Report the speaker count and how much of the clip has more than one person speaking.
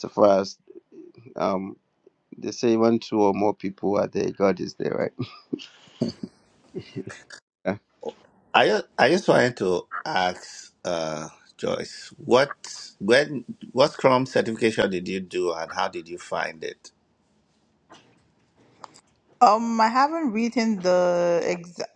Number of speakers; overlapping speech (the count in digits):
3, no overlap